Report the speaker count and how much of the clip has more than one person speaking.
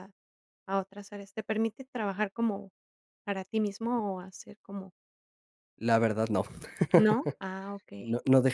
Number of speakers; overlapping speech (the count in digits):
2, about 2%